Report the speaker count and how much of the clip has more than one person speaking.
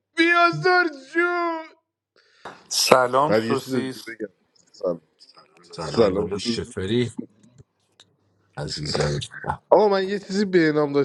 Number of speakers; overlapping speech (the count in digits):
3, about 14%